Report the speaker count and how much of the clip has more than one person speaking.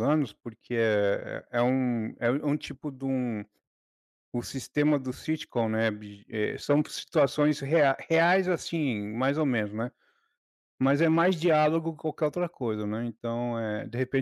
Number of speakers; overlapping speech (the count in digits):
1, no overlap